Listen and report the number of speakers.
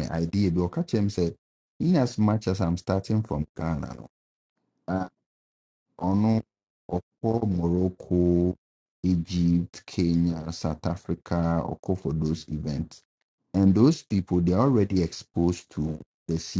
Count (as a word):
one